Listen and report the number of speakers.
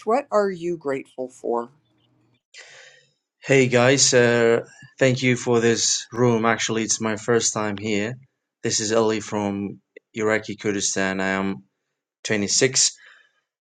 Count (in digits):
2